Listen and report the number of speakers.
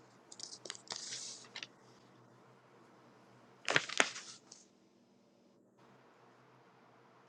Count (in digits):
0